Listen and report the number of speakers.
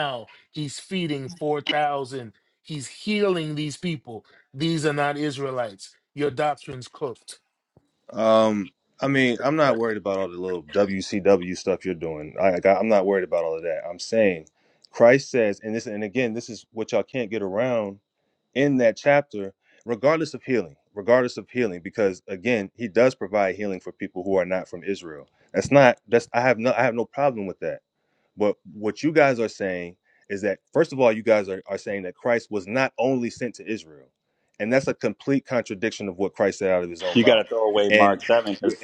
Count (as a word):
three